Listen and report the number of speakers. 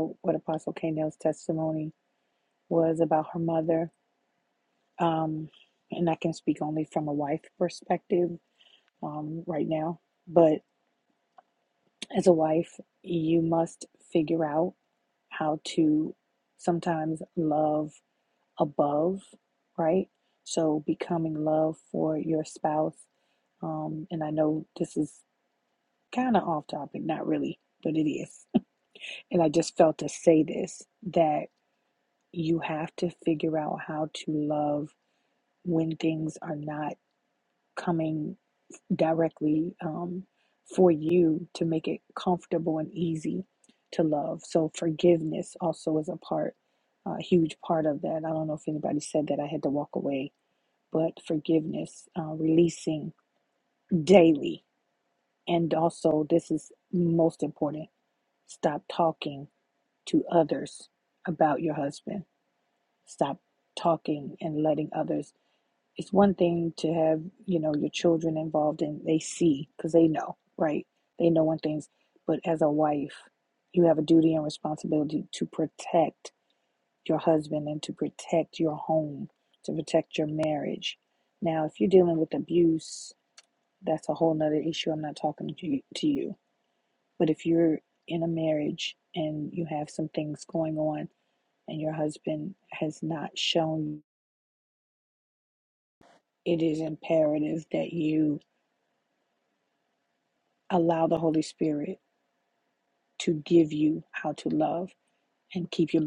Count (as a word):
one